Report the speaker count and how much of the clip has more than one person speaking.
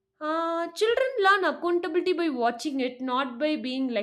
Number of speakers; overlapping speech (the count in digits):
1, no overlap